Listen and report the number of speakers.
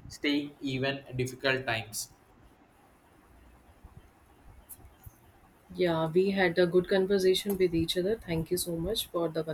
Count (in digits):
2